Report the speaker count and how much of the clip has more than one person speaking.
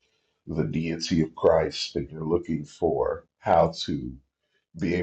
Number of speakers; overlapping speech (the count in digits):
1, no overlap